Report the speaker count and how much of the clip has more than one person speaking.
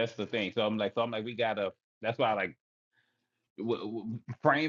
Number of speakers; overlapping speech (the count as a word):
one, no overlap